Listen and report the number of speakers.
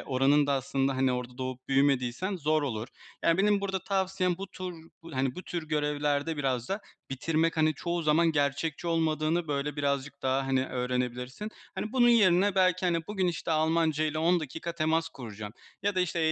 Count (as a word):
one